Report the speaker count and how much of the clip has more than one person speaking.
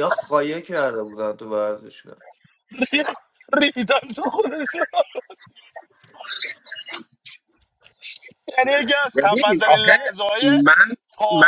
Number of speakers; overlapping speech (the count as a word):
three, about 10%